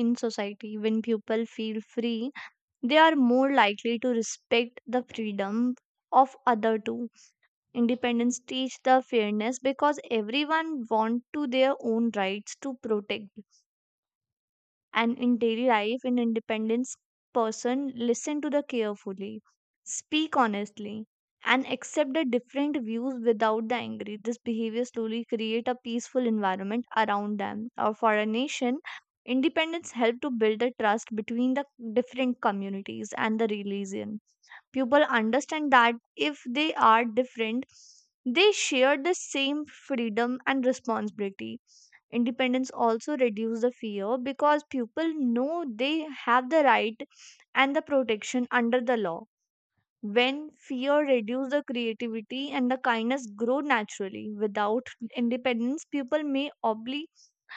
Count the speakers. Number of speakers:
one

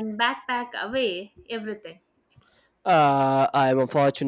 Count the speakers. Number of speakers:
two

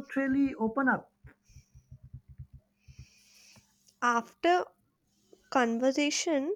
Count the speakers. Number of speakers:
two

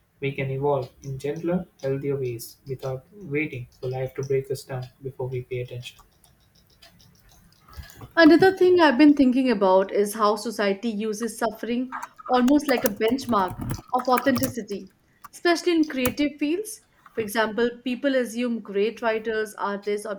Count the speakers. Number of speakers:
two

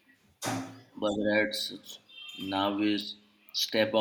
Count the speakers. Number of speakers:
one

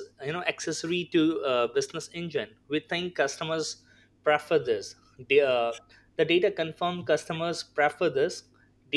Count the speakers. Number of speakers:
one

